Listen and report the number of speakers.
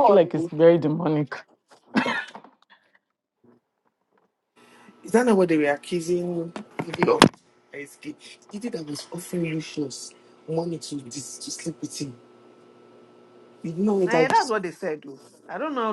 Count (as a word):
three